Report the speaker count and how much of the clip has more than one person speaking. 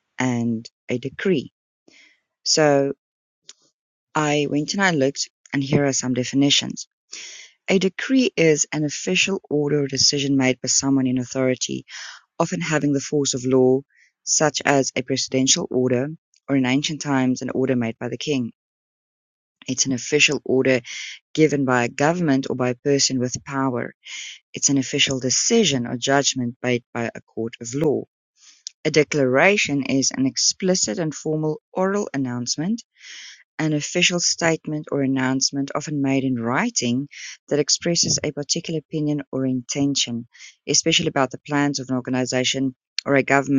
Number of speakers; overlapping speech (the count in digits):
1, no overlap